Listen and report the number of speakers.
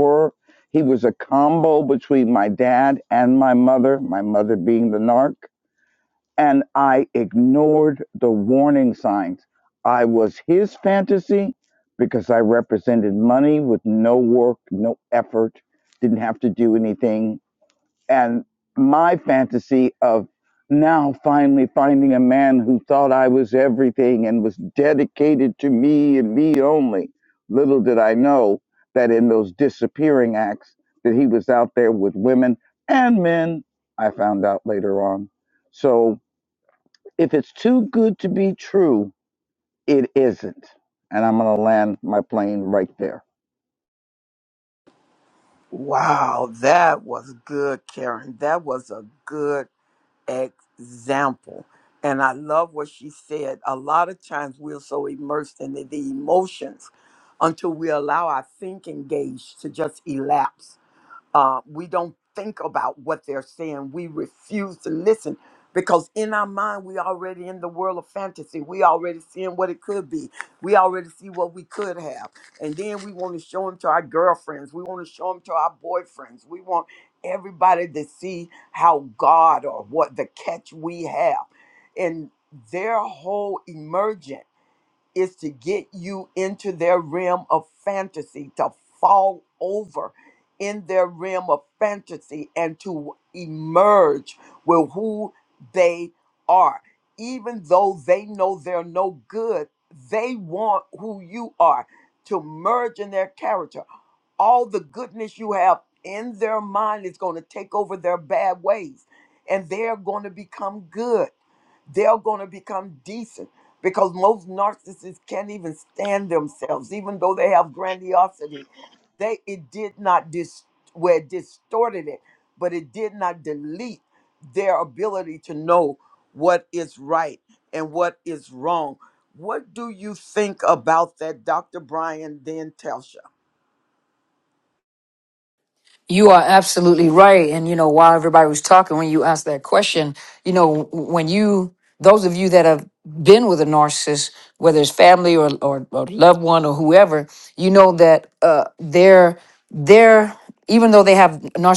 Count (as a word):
three